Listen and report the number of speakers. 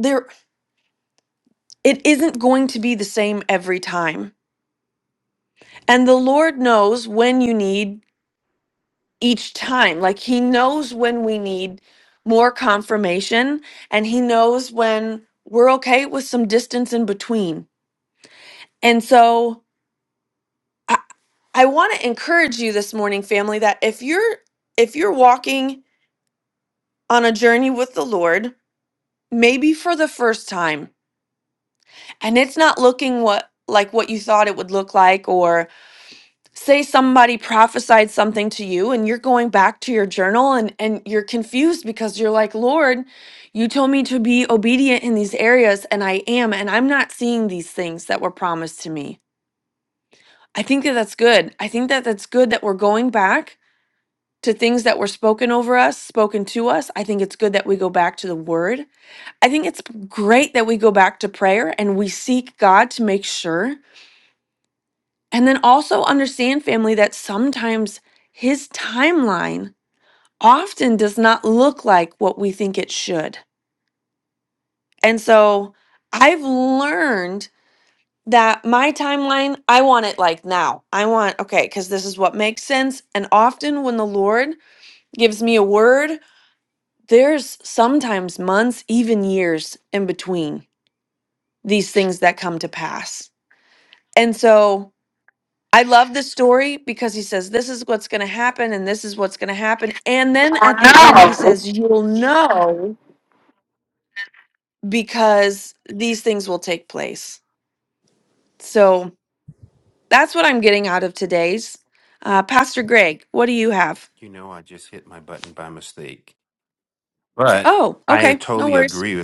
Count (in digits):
2